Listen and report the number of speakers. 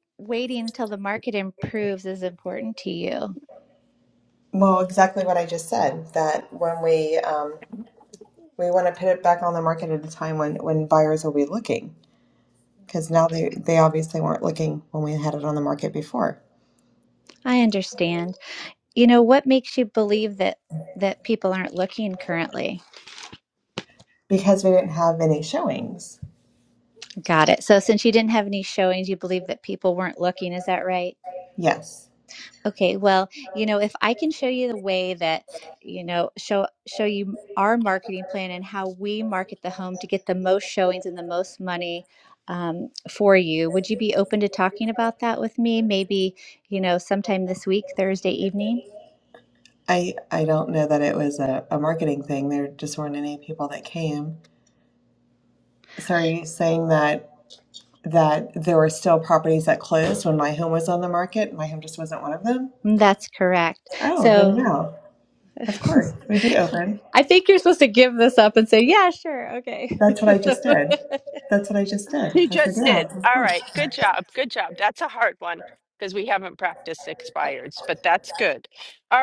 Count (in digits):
3